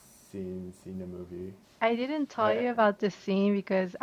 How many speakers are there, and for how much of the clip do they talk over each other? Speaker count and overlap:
two, about 8%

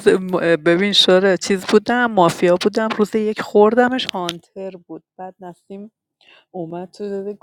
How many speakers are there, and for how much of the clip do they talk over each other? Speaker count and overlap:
one, no overlap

